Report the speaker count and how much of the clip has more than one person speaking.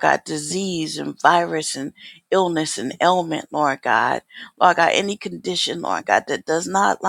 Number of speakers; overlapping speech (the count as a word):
one, no overlap